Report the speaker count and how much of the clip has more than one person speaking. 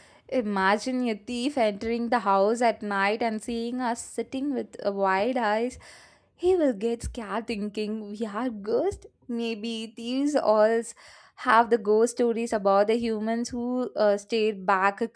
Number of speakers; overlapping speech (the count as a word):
one, no overlap